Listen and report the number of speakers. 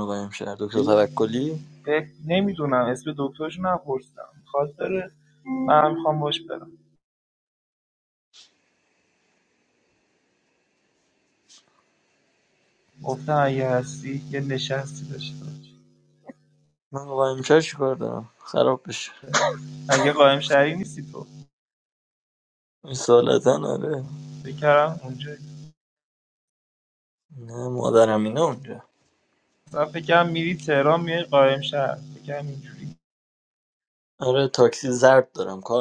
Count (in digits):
2